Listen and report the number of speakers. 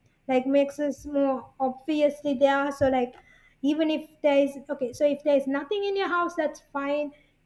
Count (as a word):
one